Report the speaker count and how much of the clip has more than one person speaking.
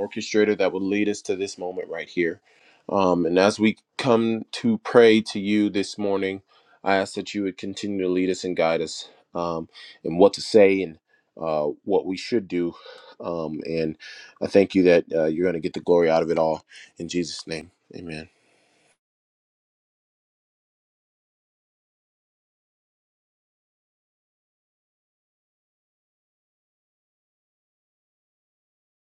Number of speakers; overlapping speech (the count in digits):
1, no overlap